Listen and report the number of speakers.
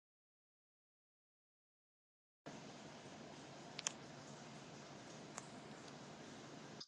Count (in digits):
0